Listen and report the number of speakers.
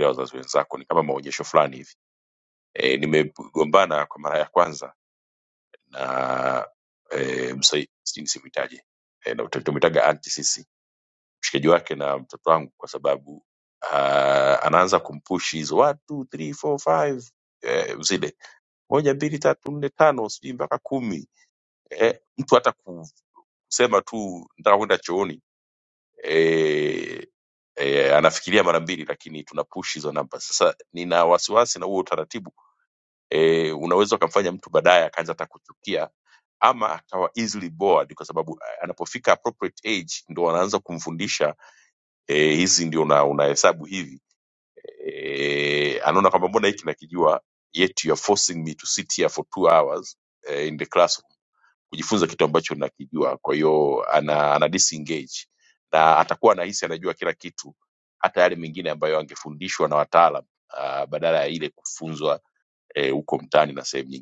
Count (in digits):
1